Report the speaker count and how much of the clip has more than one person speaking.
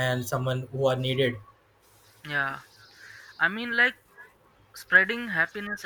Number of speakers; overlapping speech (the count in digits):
2, no overlap